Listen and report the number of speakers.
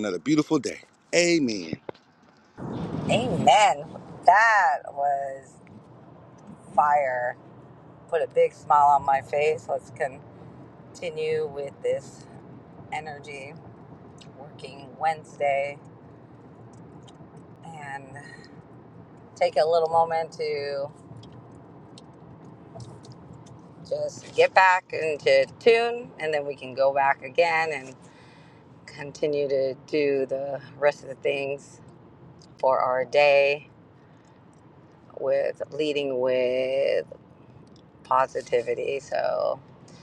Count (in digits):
2